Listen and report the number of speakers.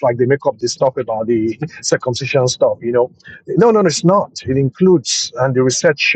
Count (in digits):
1